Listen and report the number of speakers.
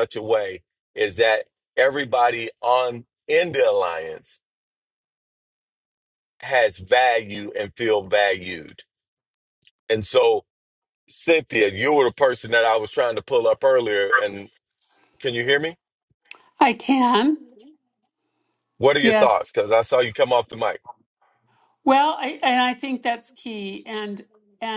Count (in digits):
2